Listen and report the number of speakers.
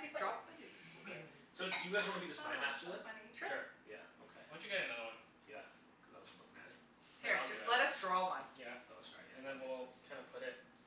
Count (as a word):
four